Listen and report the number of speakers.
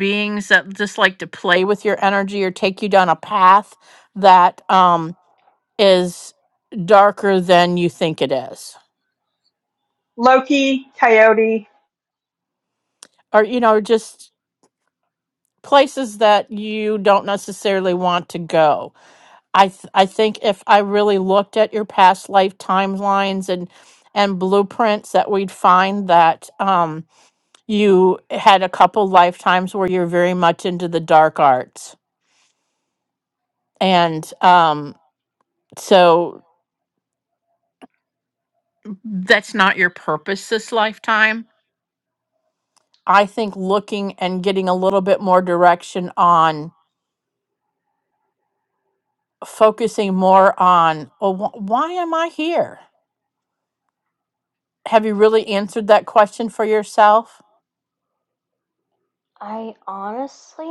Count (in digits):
3